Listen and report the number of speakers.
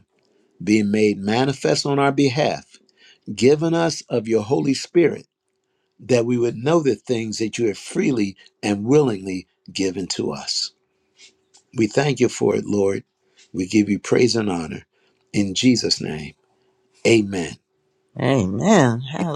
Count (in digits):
2